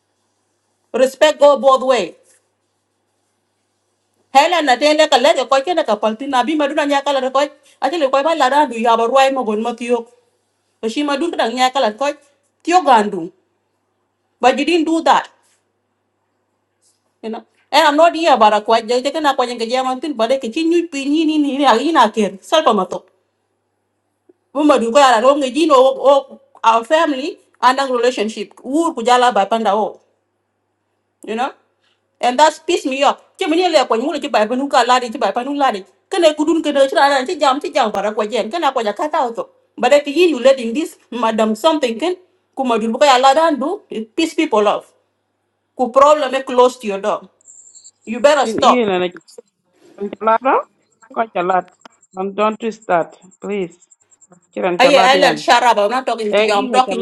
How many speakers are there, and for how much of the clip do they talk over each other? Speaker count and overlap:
2, about 3%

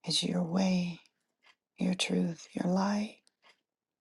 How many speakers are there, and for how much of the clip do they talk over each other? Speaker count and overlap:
1, no overlap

